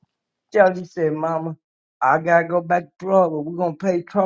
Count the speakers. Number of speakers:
1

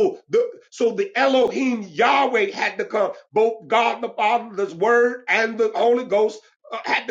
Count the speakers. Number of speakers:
1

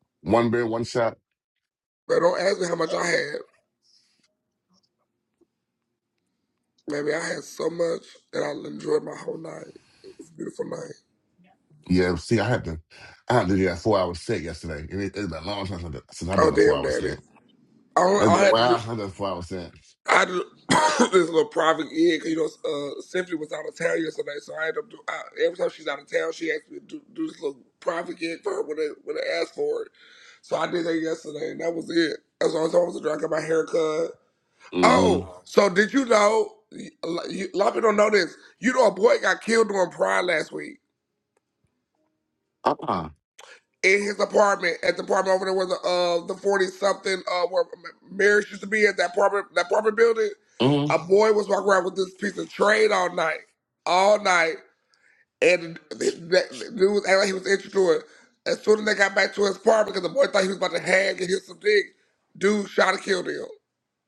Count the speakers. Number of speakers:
2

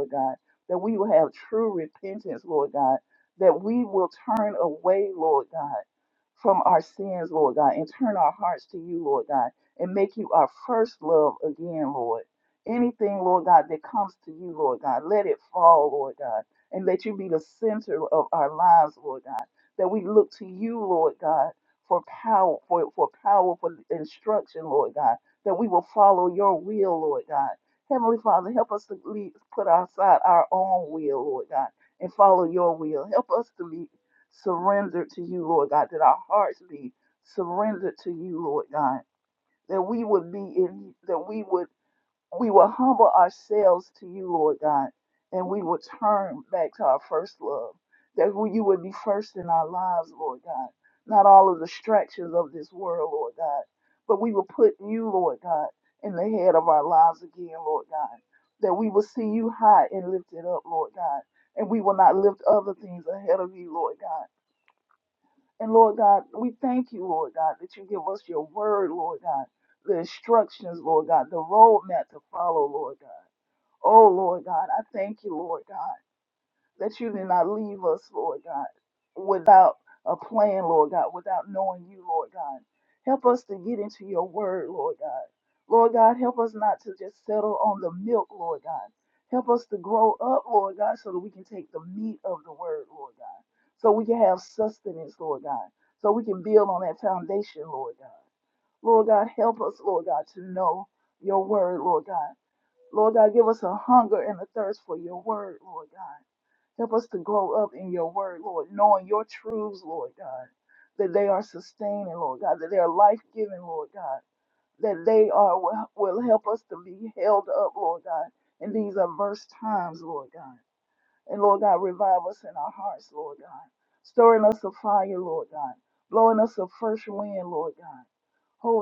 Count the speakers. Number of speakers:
1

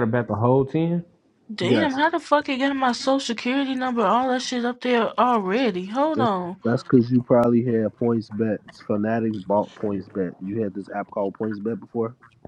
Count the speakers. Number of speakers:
3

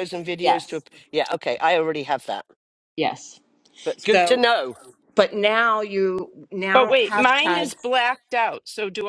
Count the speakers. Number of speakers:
3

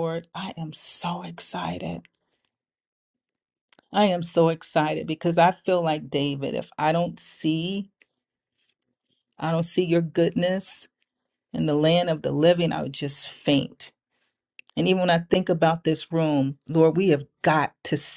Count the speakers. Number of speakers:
1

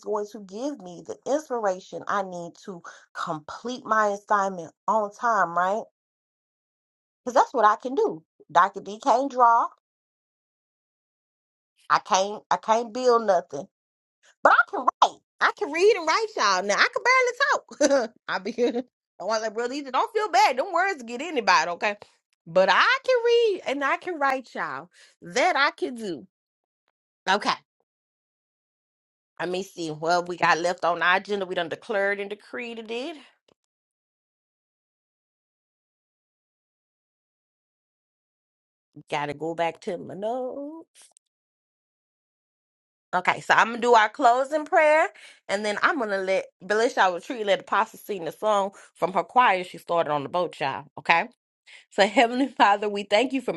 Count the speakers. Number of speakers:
1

